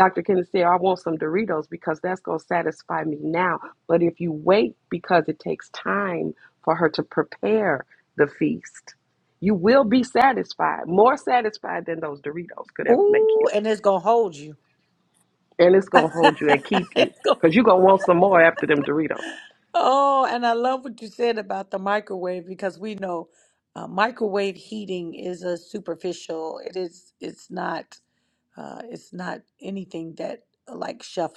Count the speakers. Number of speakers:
2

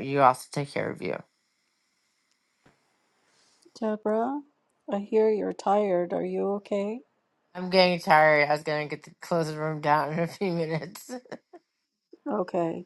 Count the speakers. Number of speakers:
2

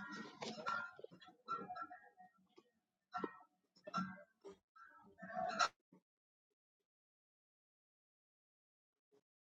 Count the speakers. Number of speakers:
0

